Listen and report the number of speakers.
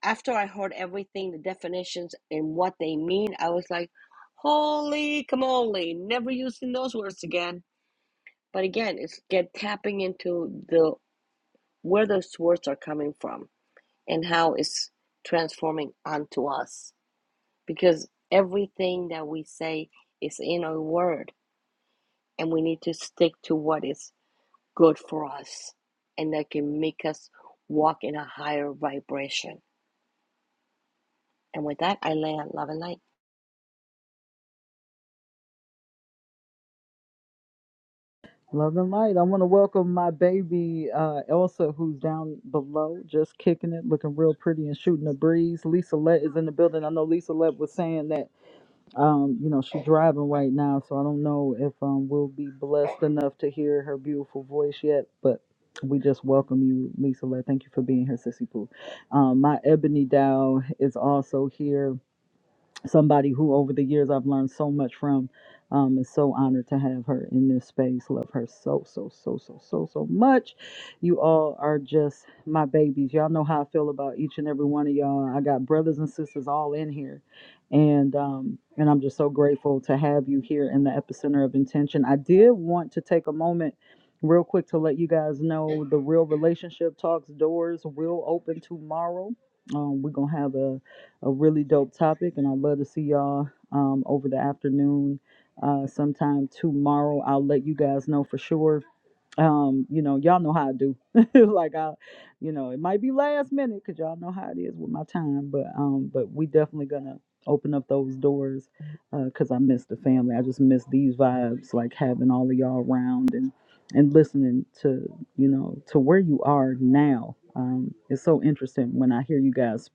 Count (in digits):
2